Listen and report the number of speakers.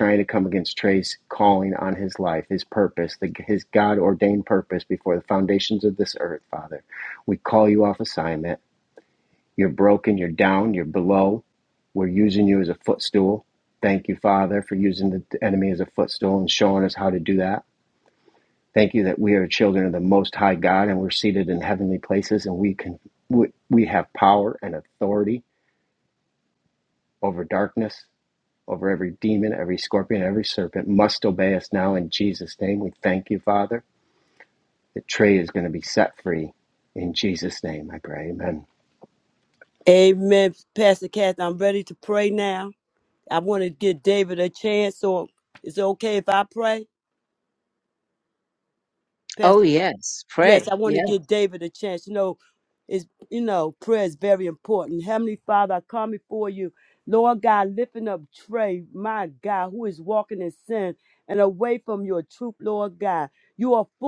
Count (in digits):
3